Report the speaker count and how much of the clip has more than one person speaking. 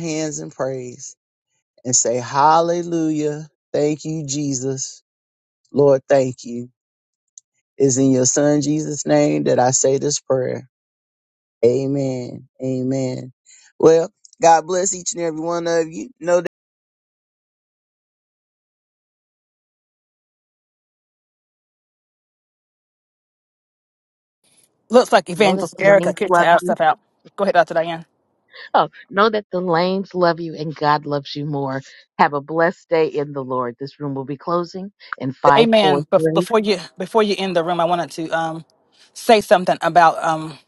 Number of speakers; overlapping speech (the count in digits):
3, about 6%